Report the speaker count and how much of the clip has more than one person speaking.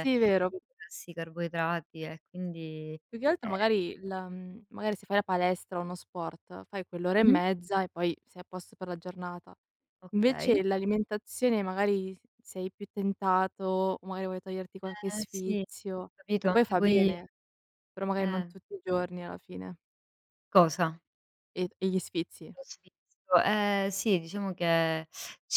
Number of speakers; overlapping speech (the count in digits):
2, about 10%